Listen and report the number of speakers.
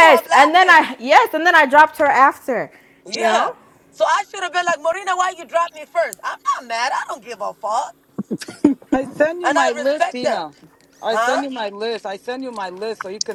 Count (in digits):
3